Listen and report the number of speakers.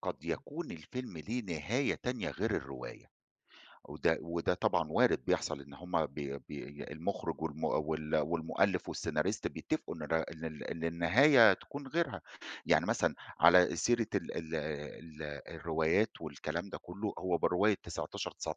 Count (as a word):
one